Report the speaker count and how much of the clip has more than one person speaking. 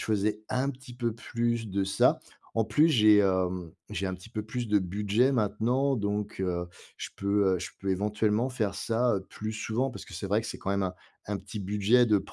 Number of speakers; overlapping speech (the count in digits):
1, no overlap